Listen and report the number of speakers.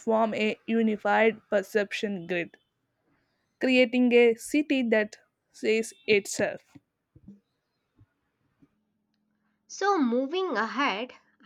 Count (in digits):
2